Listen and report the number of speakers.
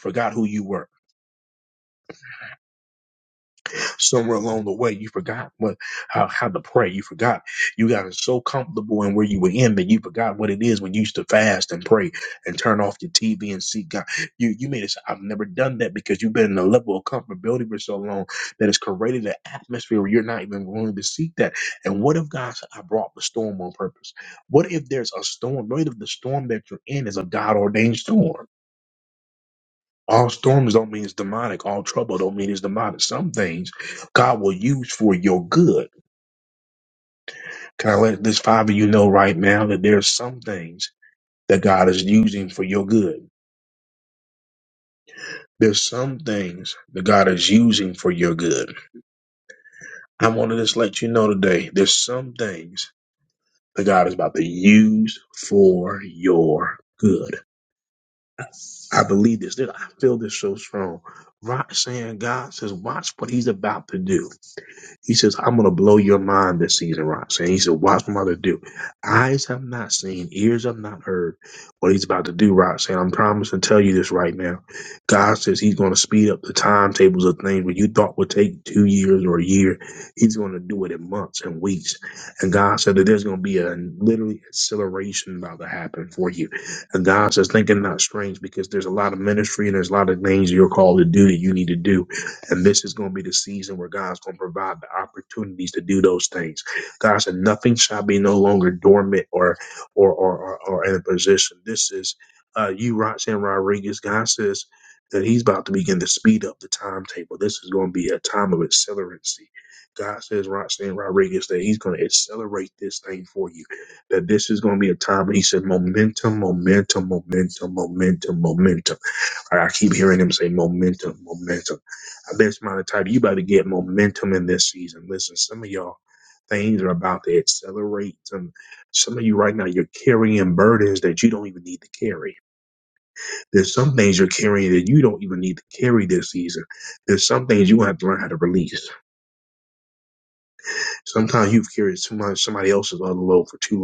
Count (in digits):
1